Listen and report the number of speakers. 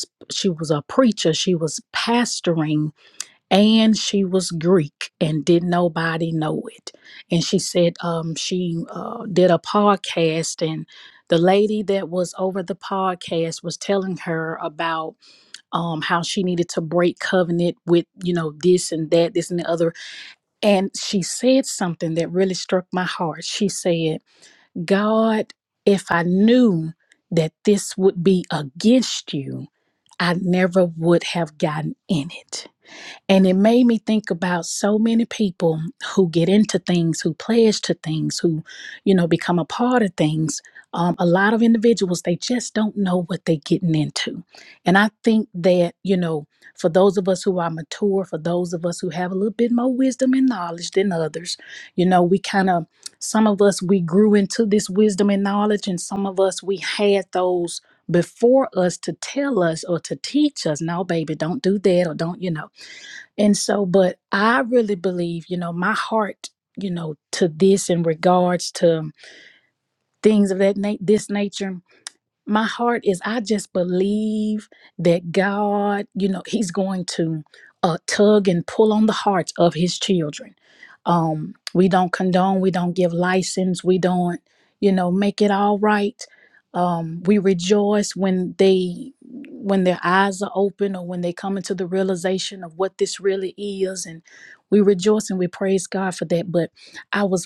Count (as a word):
one